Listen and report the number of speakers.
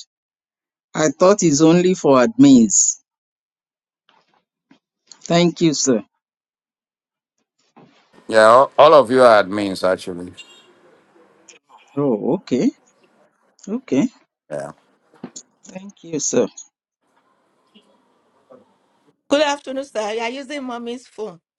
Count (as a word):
three